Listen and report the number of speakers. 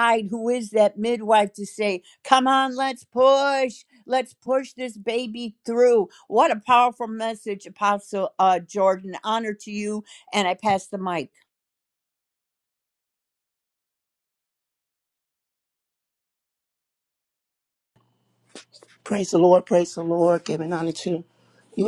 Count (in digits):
2